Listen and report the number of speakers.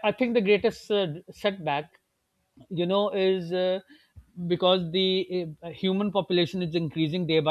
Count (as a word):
one